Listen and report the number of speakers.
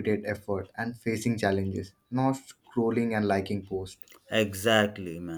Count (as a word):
two